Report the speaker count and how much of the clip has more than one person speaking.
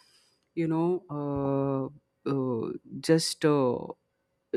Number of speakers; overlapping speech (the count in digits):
1, no overlap